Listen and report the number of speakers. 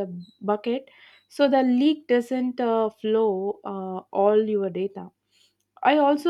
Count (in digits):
1